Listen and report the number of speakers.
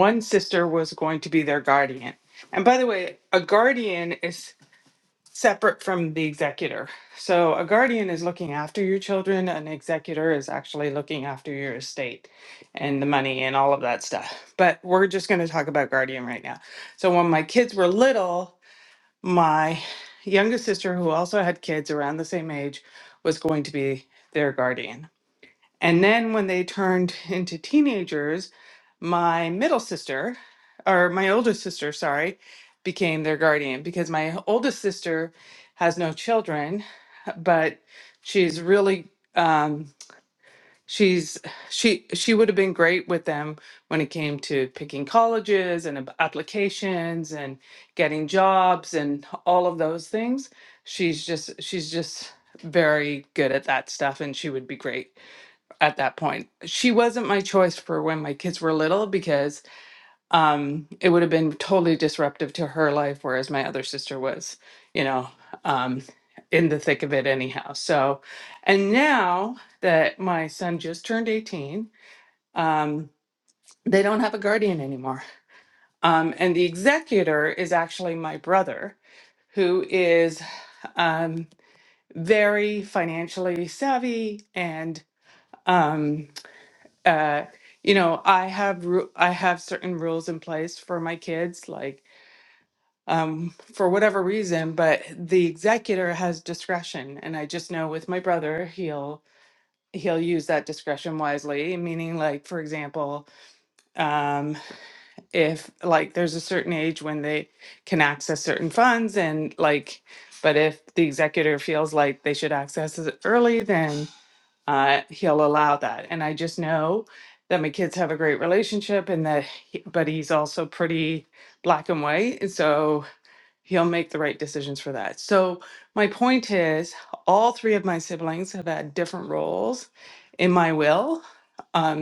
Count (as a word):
one